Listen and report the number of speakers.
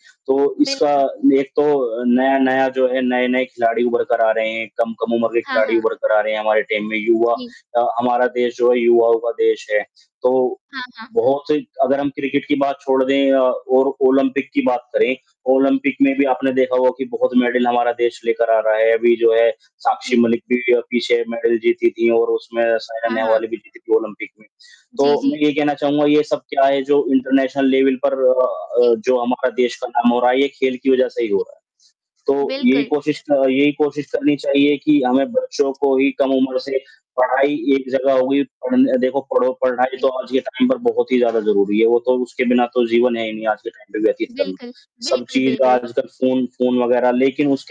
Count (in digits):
2